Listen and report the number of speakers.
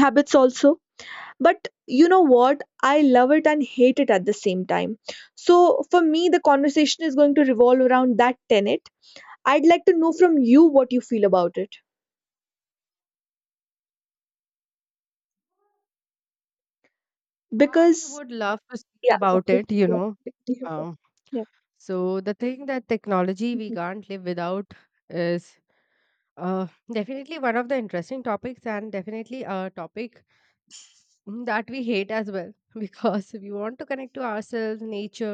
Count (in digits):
2